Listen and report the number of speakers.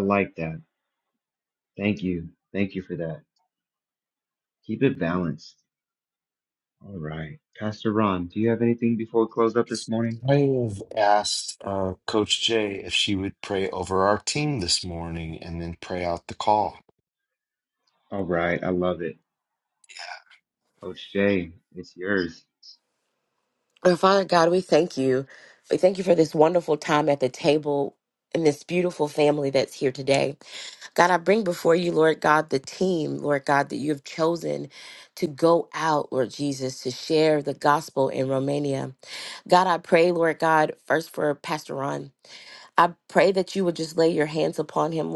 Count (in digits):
3